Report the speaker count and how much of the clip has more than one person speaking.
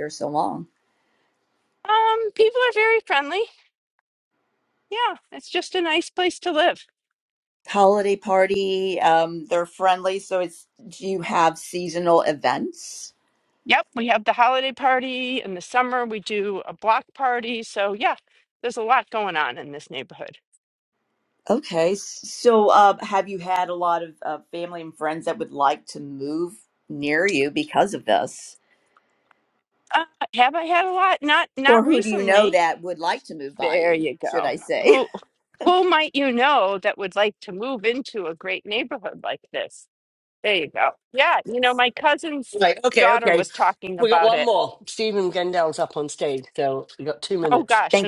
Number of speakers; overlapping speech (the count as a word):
three, about 7%